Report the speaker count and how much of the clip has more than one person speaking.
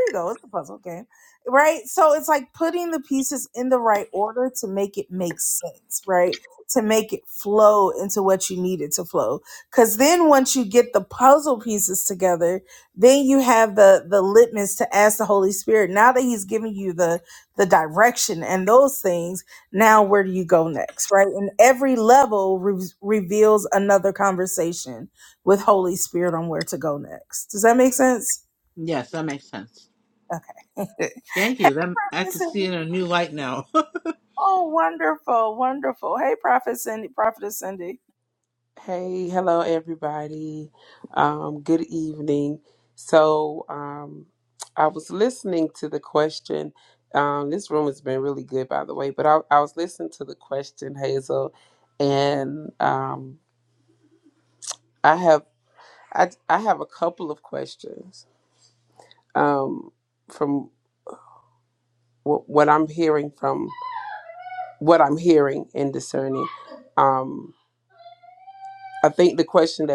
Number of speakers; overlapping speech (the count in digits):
3, no overlap